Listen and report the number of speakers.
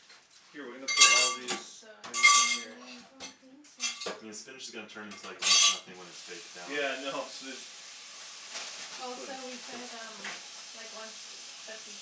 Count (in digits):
3